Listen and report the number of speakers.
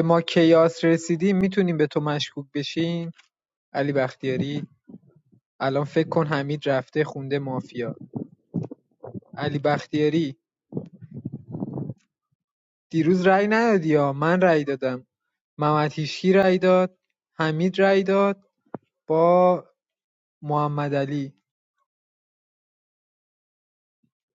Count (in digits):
1